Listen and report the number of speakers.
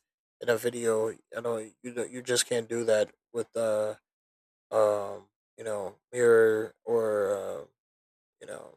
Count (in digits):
1